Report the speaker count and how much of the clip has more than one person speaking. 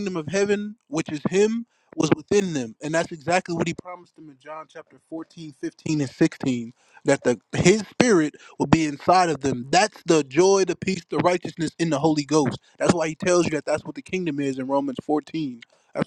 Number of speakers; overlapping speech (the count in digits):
1, no overlap